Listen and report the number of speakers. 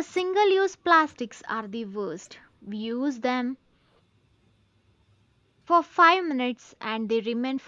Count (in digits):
1